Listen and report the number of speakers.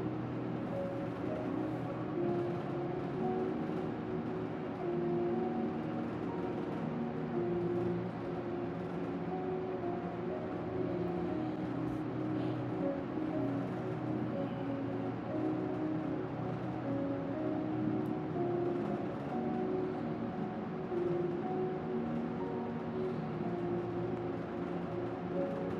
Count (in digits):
0